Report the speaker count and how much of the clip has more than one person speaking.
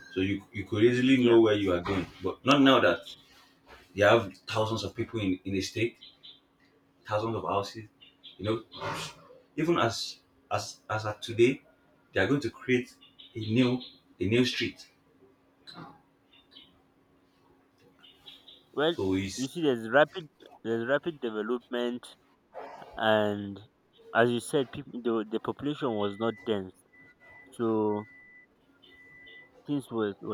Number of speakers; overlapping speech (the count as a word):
two, about 1%